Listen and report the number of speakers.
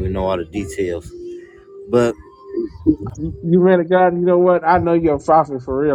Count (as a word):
two